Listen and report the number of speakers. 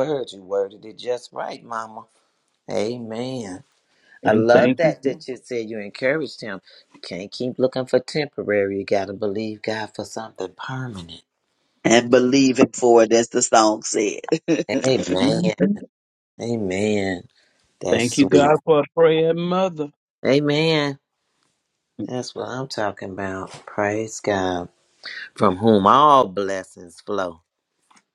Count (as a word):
three